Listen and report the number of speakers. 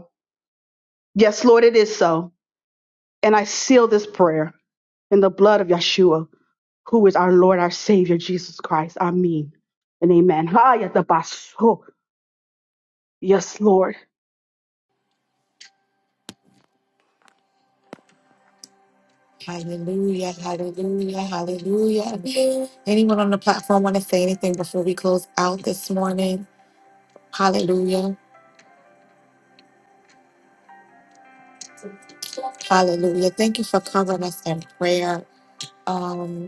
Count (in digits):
2